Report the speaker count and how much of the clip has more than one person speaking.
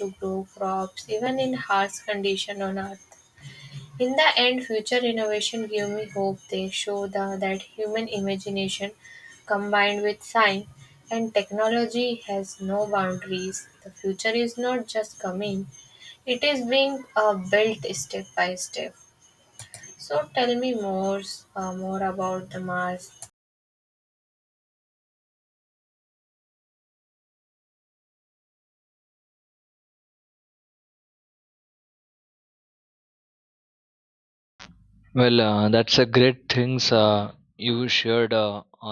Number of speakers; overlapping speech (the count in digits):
2, no overlap